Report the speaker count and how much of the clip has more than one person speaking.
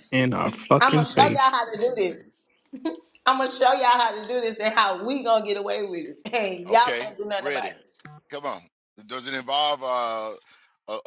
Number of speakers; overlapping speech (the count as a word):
three, about 16%